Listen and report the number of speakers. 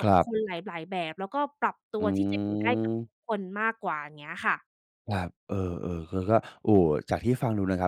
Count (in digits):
2